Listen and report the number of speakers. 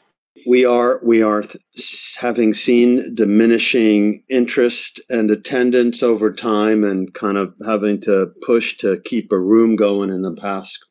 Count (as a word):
one